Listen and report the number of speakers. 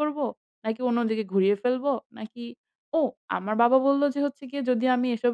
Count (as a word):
one